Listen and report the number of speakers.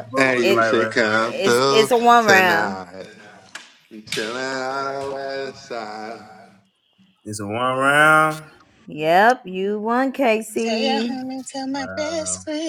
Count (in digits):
4